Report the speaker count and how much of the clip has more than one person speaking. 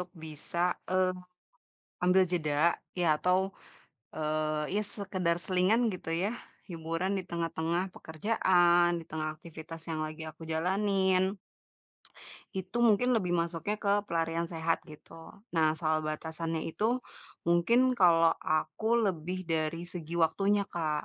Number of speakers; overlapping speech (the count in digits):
1, no overlap